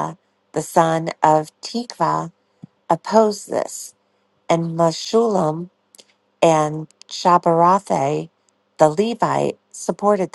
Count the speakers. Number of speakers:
1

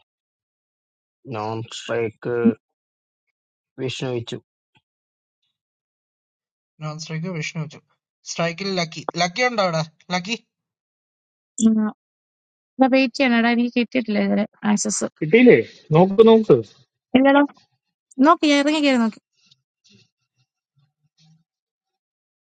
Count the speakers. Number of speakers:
4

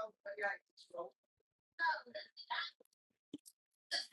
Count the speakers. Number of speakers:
0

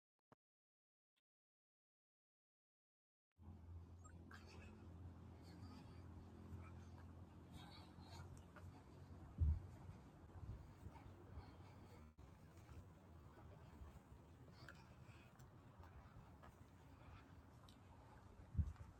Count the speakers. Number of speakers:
0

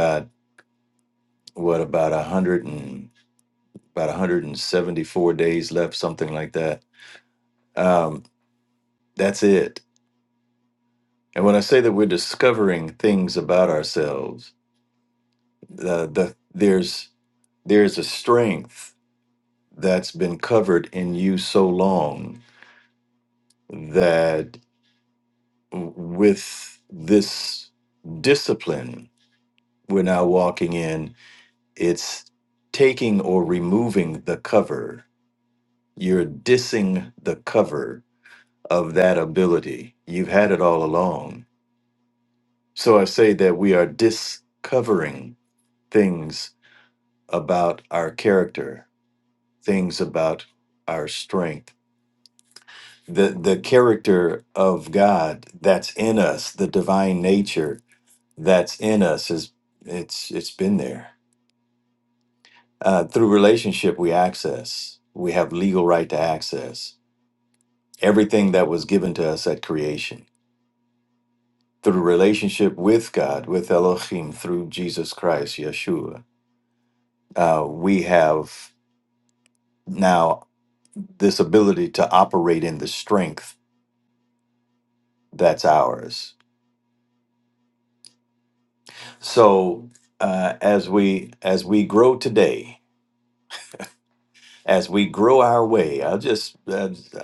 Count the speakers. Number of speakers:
1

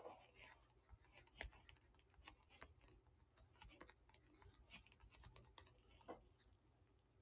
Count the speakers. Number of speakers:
0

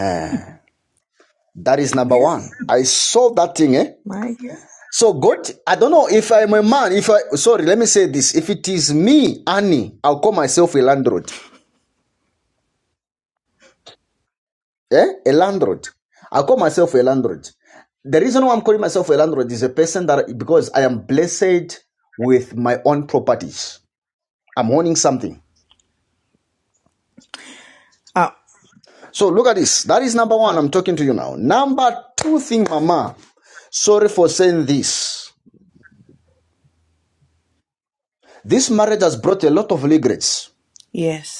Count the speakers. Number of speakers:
2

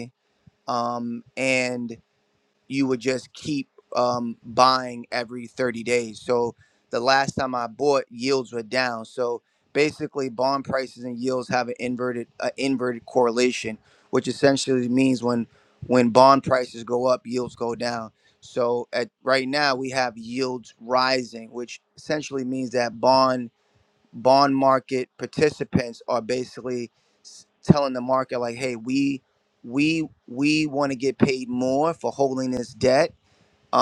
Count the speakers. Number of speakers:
1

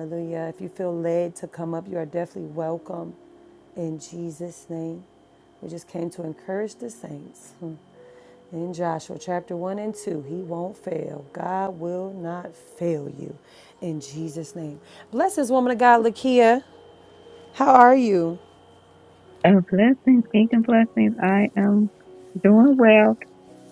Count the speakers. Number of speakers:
2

